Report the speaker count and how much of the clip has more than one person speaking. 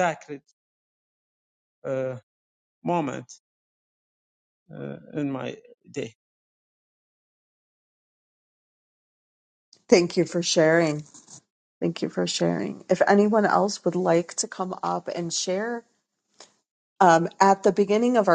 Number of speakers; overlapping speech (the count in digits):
2, no overlap